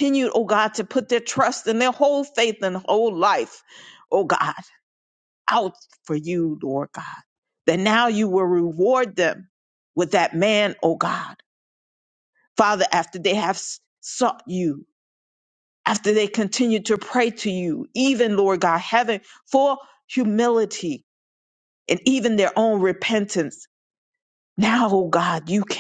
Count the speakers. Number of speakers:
one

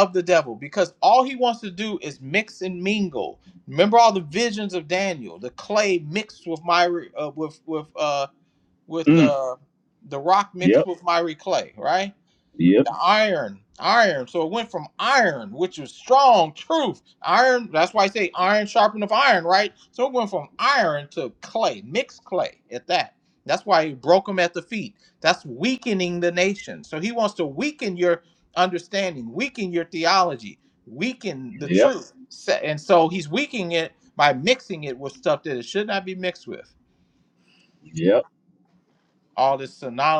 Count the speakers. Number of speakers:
two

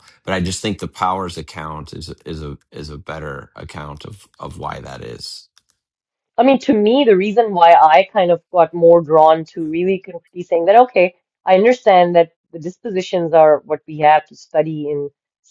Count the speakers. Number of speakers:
two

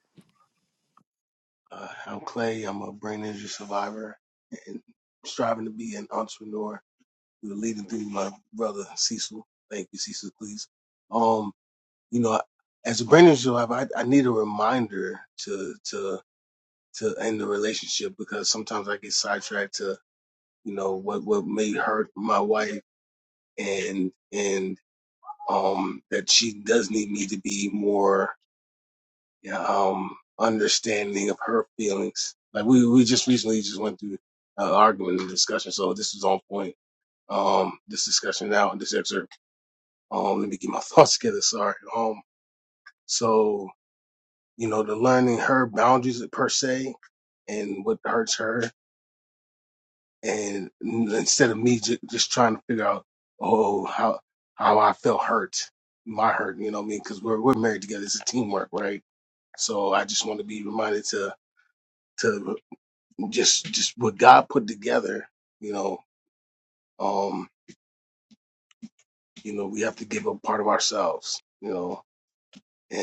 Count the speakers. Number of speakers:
one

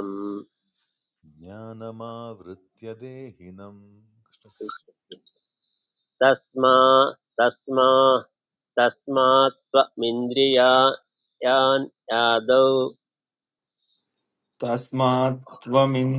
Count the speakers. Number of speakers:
three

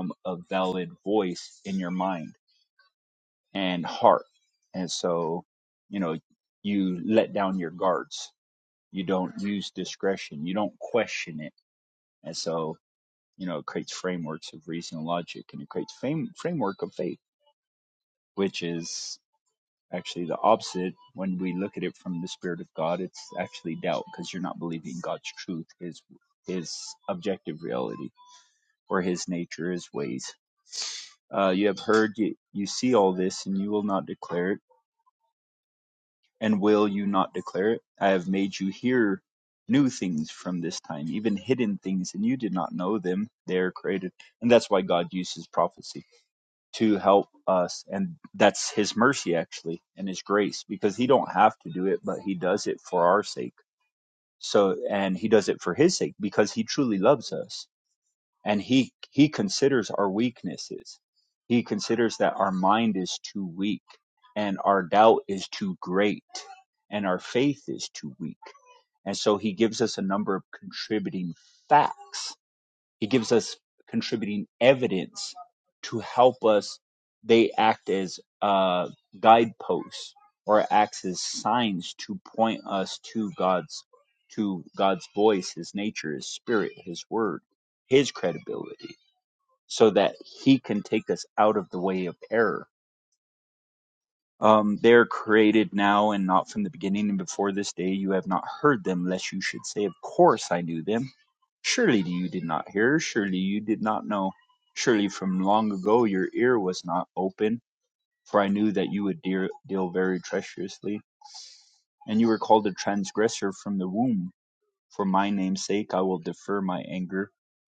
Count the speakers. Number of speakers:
one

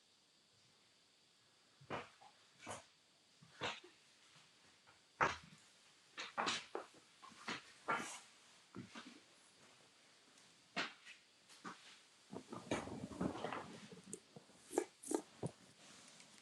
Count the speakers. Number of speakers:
zero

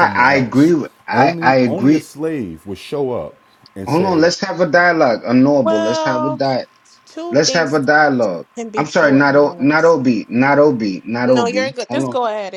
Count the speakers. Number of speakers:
three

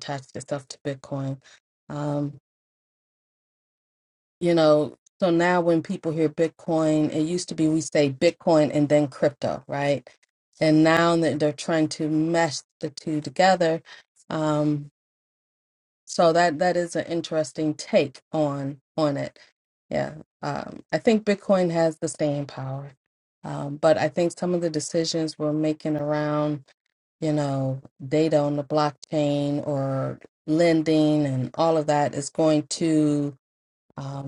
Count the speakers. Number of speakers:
one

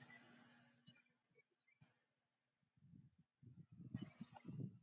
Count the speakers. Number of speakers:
zero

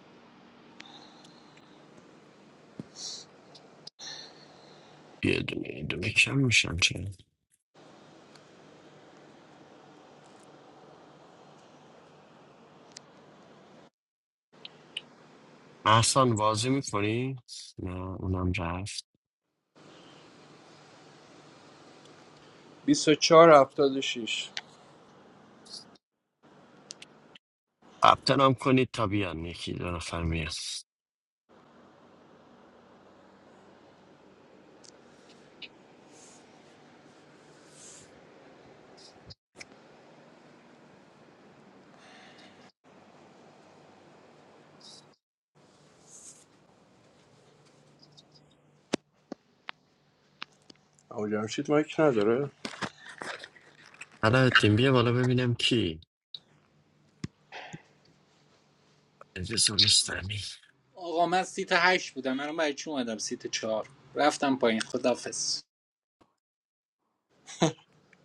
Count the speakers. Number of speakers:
three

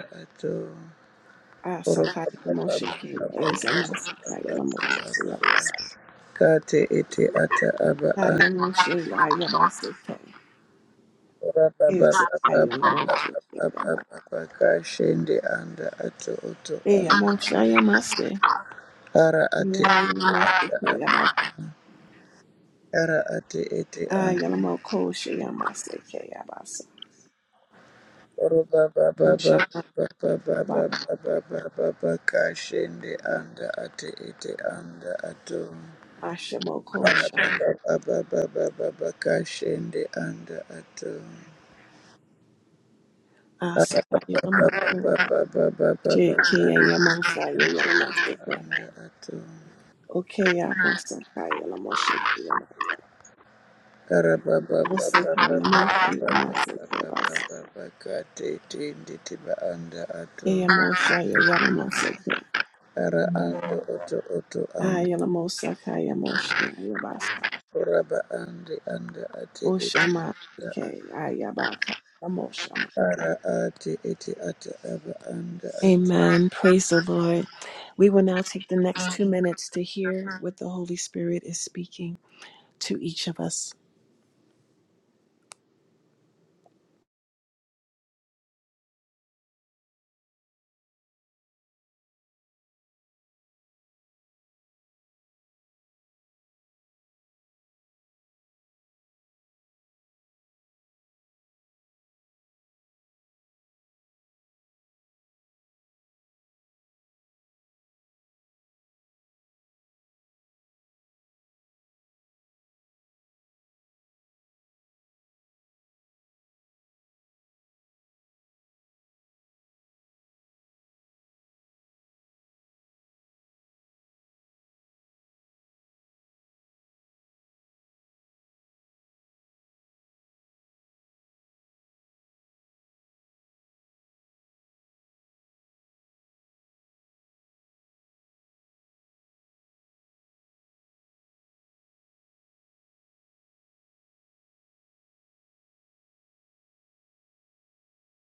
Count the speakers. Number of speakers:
two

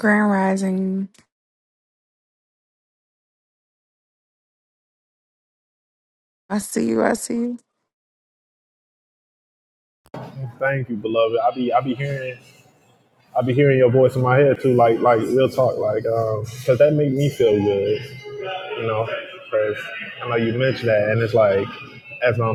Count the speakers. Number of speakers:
two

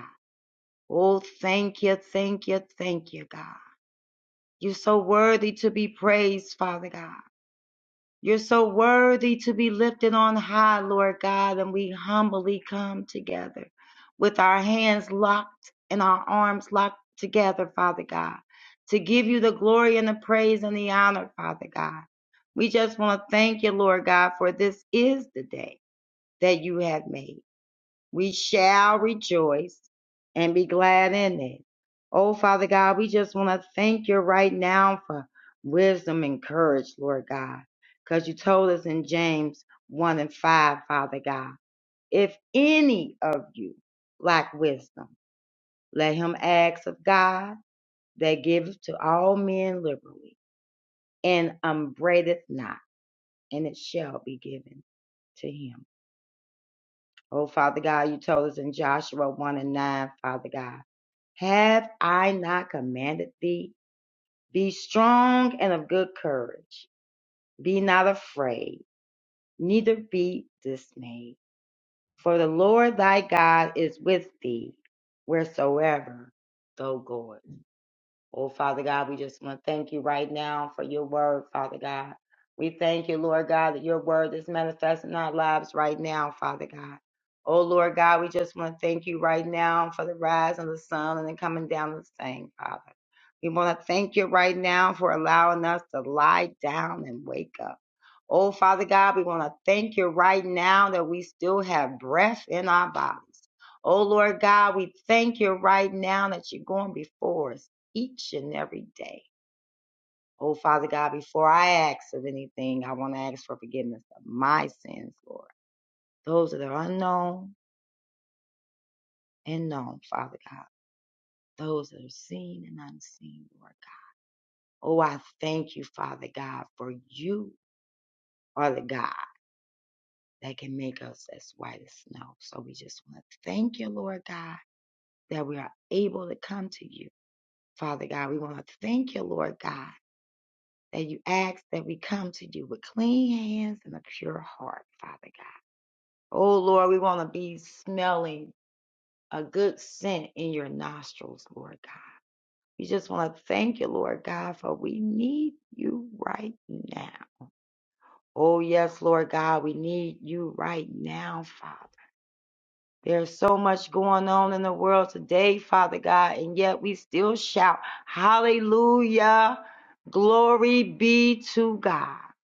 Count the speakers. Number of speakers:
one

